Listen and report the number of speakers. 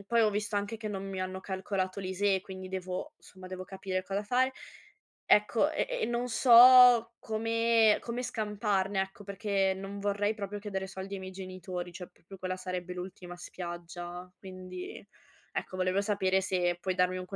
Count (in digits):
1